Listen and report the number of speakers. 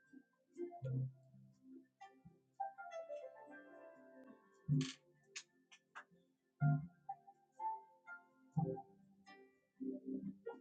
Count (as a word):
zero